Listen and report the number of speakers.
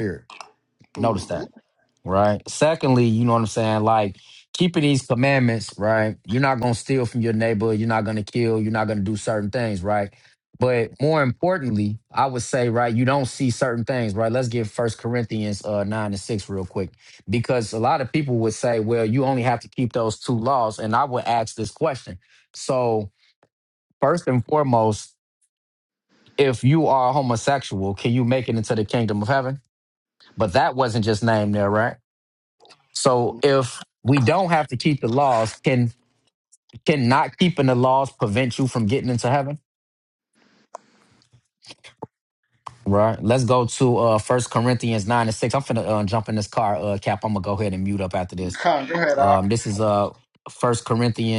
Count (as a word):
two